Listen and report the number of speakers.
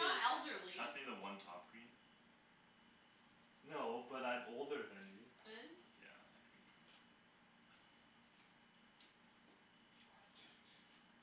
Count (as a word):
three